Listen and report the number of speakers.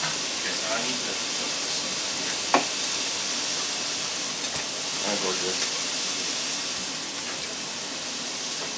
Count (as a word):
one